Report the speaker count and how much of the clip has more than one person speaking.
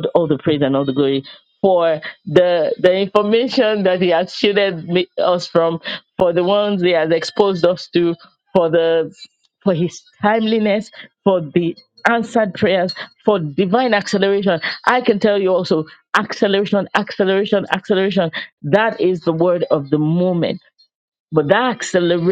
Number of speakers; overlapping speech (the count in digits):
1, no overlap